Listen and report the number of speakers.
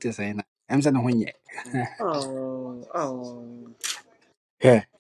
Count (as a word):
two